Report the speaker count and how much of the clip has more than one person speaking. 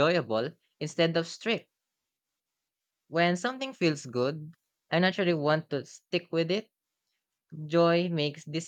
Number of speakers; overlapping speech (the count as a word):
one, no overlap